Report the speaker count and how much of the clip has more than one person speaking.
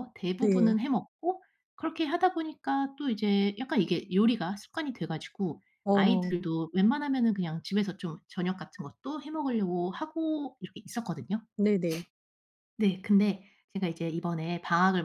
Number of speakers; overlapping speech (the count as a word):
two, about 5%